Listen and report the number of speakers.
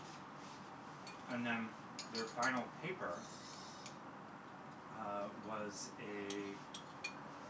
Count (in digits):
1